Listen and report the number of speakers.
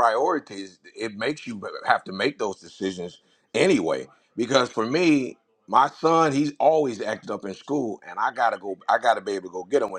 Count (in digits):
1